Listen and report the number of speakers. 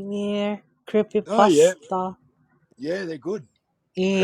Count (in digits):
2